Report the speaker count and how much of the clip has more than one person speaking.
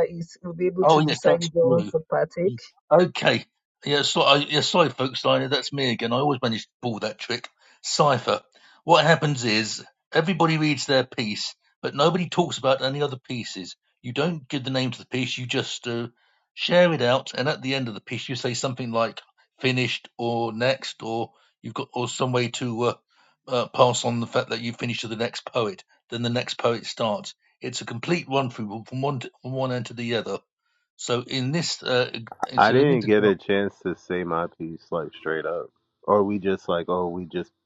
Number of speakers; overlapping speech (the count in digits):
3, about 4%